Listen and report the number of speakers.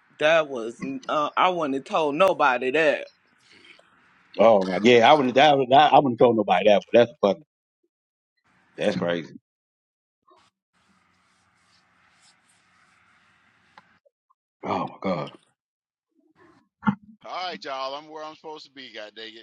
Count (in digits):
3